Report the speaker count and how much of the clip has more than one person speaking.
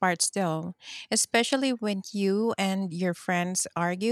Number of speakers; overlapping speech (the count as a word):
one, no overlap